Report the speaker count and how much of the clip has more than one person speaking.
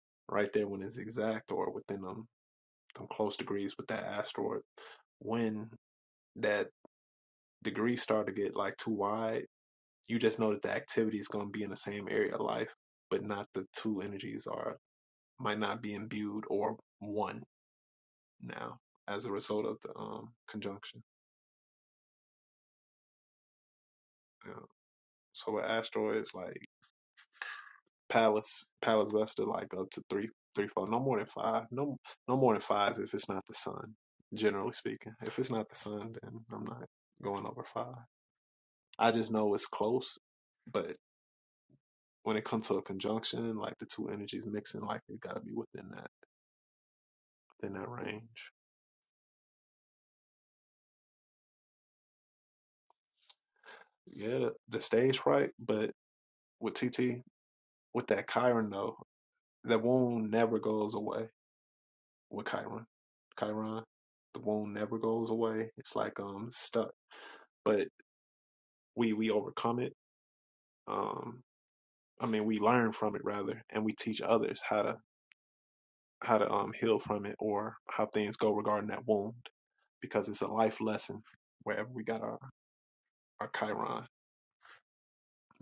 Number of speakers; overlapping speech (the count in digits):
1, no overlap